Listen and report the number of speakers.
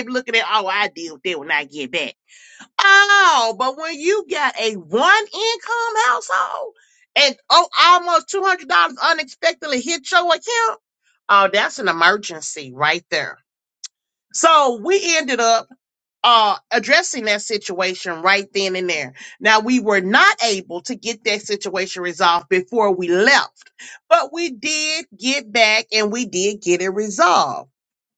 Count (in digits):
1